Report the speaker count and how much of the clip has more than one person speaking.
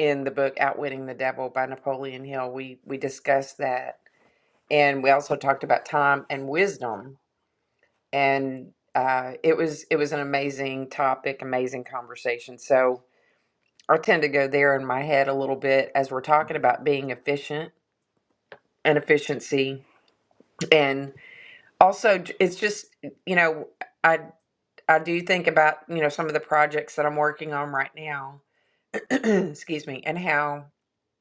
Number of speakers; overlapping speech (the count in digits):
1, no overlap